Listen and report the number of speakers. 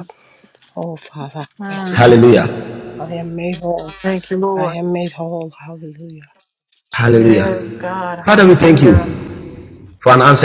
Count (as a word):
three